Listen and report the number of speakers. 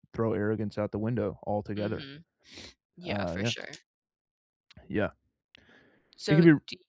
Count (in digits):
2